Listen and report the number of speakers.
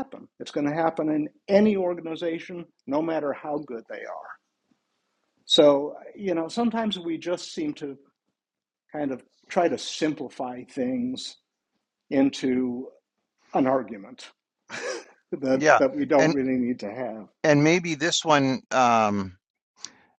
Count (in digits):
2